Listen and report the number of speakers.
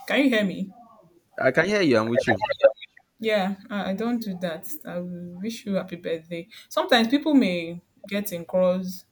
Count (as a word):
two